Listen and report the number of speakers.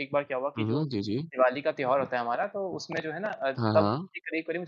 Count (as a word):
two